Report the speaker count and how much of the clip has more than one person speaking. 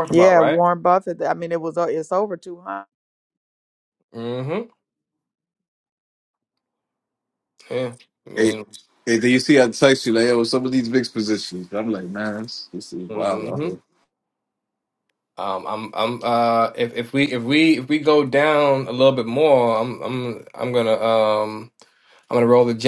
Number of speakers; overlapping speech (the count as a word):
three, about 6%